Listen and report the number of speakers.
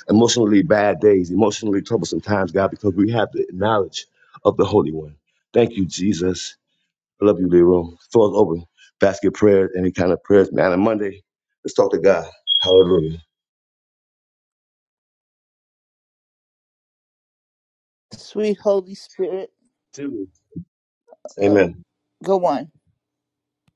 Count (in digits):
2